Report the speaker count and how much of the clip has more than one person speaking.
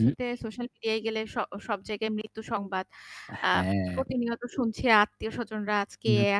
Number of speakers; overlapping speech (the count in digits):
2, about 10%